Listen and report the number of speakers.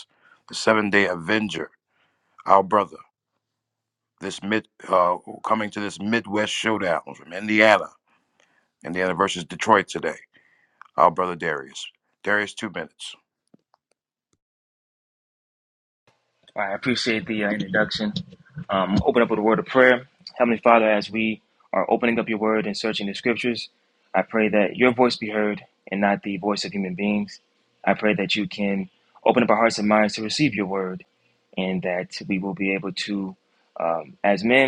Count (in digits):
2